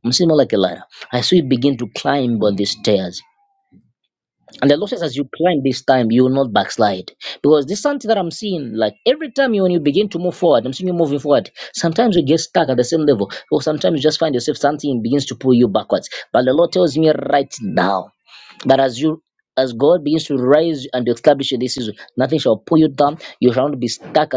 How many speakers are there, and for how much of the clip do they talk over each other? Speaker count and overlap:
one, no overlap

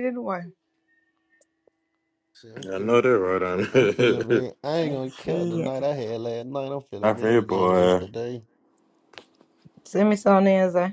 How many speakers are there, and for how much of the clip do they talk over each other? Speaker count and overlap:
three, about 27%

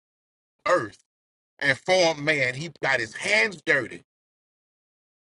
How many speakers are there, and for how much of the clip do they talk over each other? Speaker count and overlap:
one, no overlap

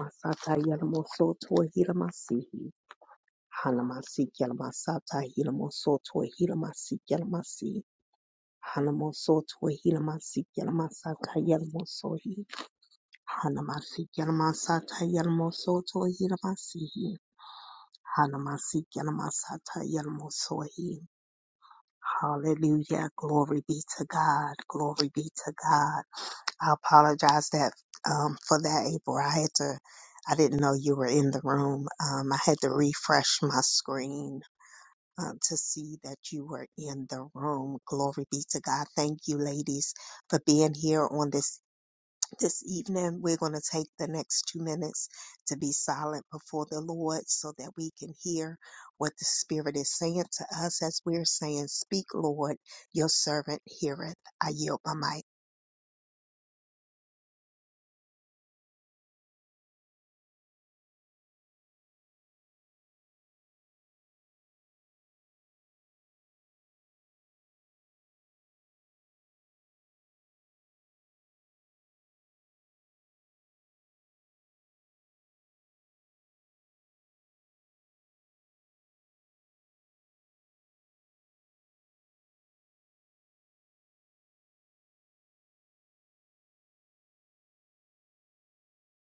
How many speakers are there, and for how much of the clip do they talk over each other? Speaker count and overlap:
one, no overlap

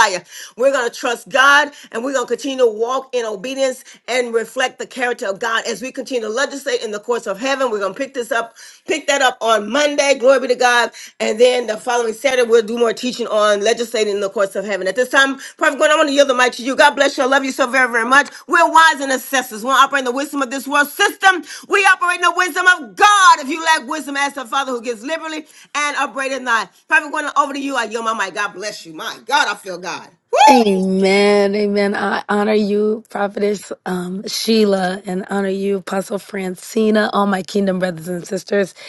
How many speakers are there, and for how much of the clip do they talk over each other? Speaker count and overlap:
two, under 1%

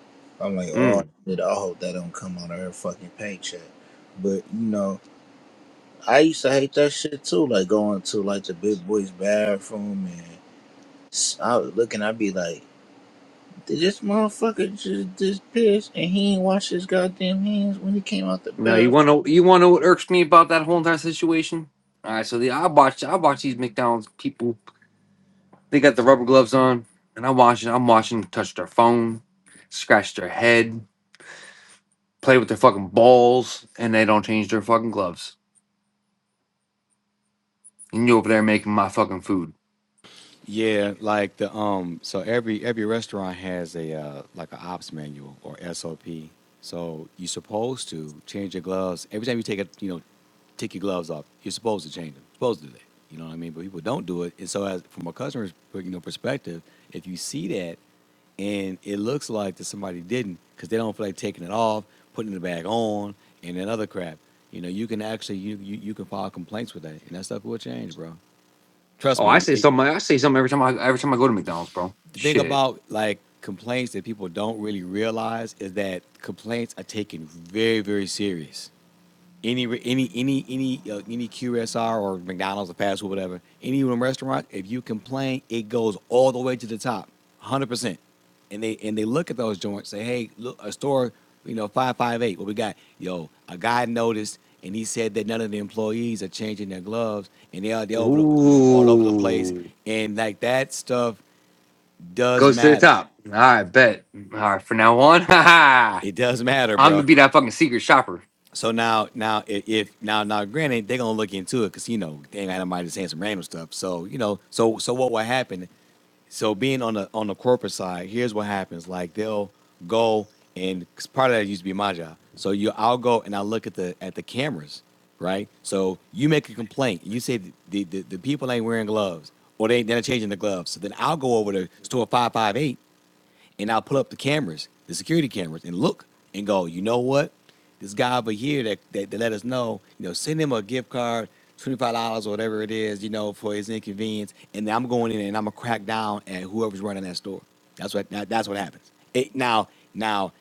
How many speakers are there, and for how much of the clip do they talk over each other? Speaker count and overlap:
three, about 2%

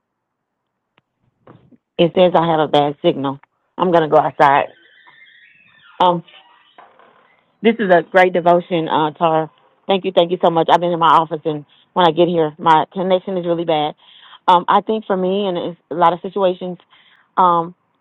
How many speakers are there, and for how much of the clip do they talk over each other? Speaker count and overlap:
one, no overlap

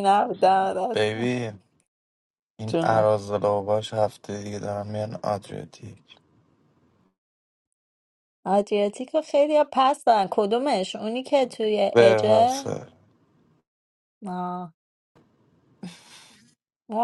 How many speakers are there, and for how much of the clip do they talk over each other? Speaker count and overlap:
two, about 8%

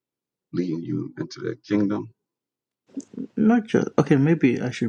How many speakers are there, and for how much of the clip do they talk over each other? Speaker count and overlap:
two, no overlap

